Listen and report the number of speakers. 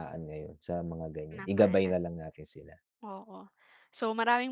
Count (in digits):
2